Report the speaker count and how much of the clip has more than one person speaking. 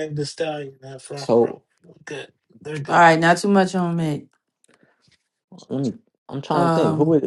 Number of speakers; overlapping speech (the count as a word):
three, about 13%